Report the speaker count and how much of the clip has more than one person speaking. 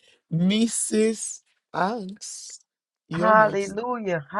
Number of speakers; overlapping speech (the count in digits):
2, about 10%